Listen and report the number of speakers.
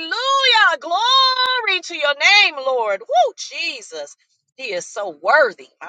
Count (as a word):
one